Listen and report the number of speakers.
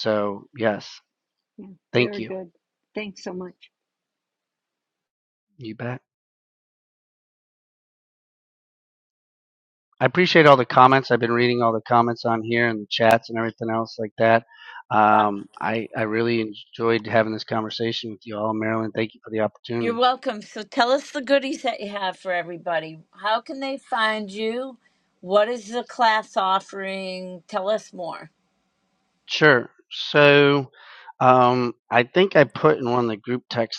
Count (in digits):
3